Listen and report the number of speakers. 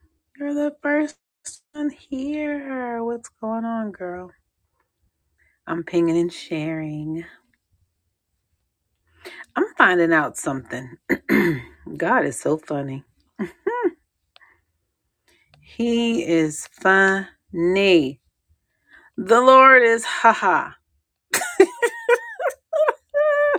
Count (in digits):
1